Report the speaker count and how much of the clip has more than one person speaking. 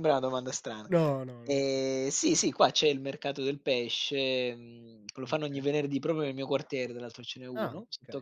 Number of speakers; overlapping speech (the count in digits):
2, about 9%